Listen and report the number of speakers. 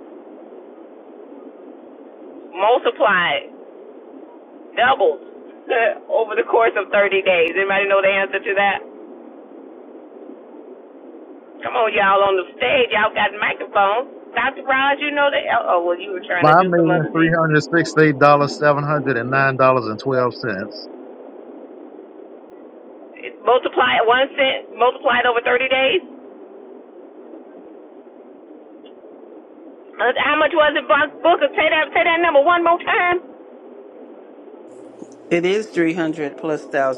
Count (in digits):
3